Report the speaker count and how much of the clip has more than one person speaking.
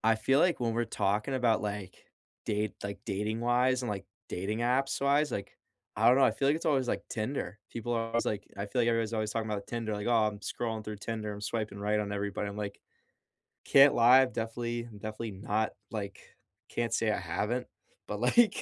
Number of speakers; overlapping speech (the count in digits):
1, no overlap